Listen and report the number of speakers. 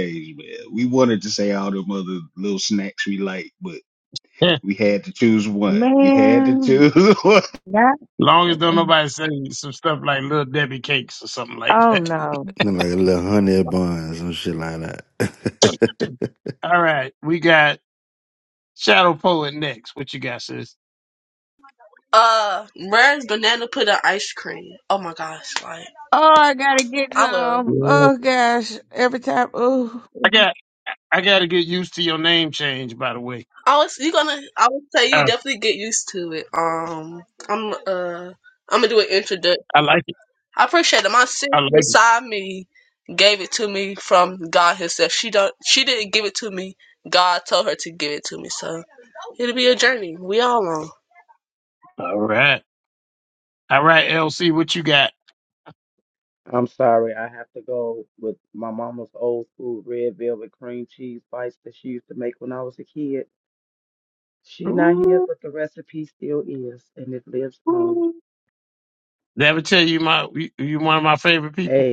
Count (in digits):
6